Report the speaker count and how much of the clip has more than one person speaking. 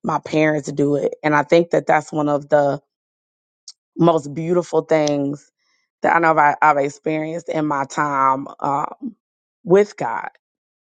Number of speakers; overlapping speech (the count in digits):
1, no overlap